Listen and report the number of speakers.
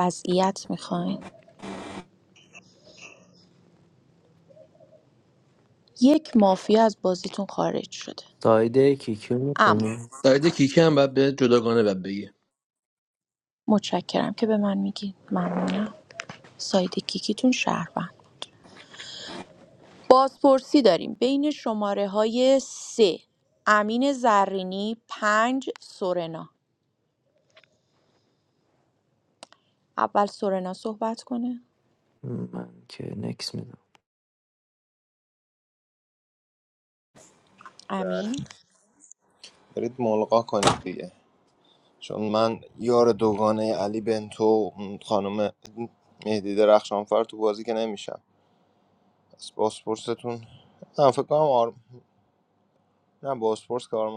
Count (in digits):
4